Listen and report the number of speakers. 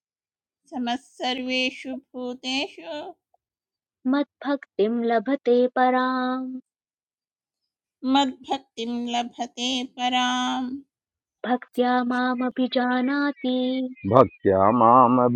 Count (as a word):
three